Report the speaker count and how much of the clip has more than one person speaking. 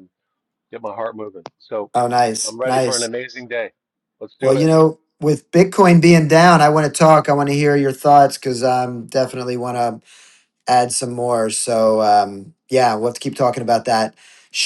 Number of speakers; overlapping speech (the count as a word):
two, about 6%